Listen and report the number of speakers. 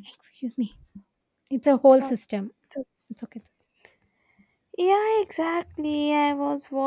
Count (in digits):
2